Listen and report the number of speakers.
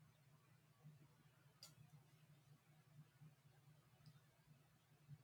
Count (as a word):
zero